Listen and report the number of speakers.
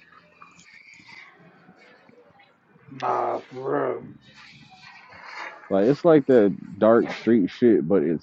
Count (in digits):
2